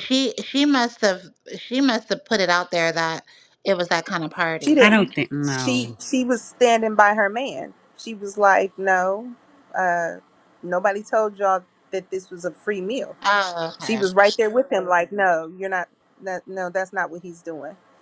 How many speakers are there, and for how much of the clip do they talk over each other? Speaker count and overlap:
three, about 6%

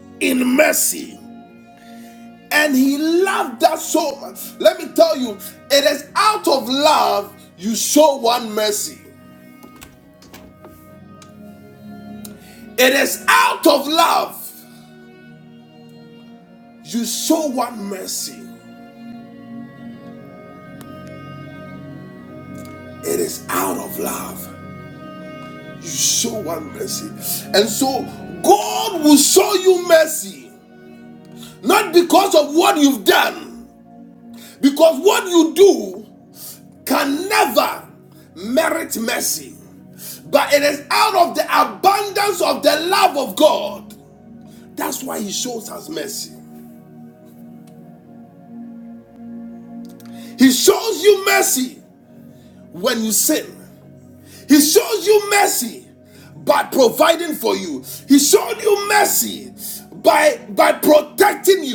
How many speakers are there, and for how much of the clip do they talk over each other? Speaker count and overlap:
one, no overlap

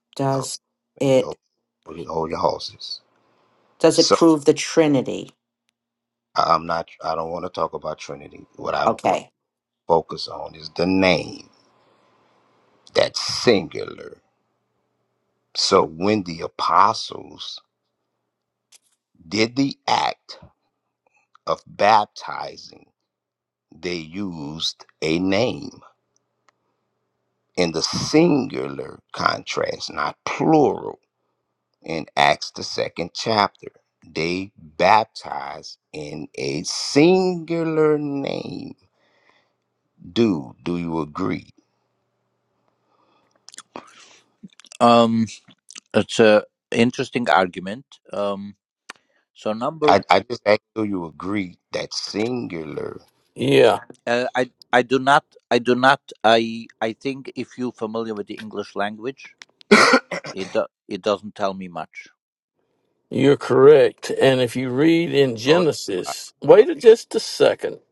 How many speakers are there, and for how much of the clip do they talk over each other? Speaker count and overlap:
four, about 2%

